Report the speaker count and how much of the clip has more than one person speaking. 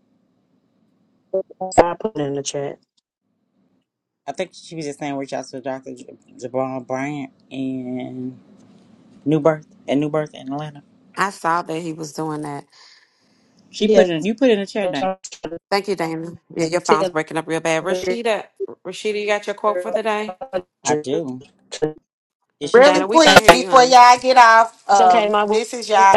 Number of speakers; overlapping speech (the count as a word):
four, about 10%